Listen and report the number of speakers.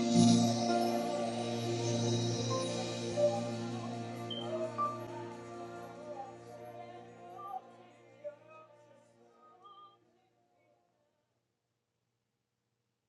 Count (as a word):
zero